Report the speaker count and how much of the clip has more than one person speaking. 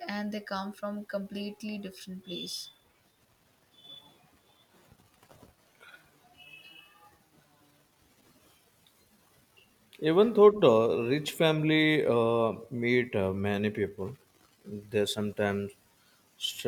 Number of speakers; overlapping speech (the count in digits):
2, no overlap